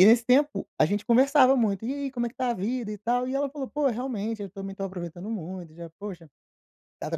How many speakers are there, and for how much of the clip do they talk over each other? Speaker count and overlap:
1, no overlap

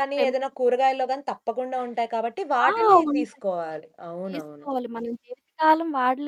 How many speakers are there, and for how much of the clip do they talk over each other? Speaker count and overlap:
2, about 18%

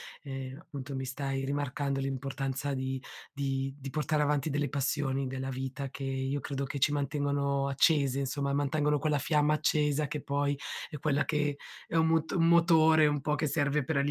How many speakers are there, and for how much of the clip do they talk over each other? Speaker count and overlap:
1, no overlap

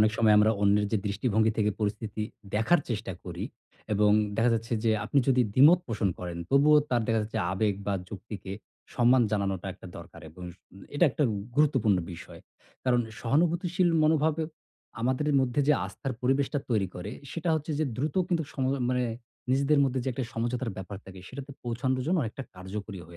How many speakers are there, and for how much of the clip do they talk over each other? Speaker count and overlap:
1, no overlap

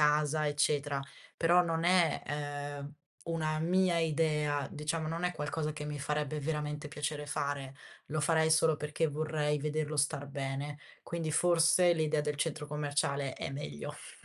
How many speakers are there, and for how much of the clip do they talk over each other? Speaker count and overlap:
1, no overlap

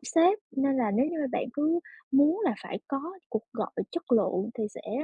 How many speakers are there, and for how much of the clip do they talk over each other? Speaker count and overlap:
1, no overlap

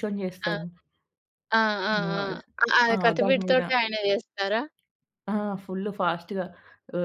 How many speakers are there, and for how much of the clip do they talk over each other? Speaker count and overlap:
2, about 18%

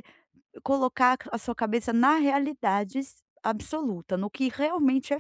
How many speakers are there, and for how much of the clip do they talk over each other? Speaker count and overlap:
1, no overlap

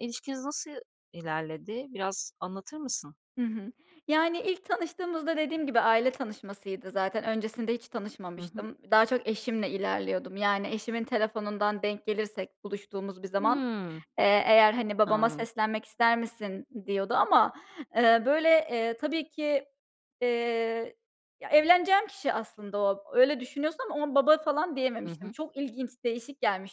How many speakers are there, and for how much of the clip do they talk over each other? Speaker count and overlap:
2, about 4%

